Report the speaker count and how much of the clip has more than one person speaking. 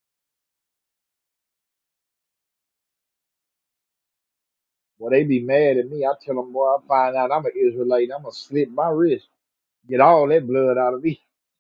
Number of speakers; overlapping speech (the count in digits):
1, no overlap